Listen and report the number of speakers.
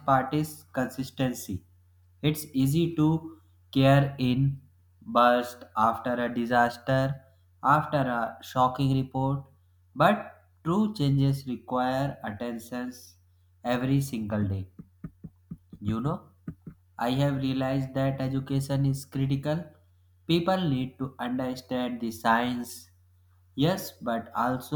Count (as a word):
one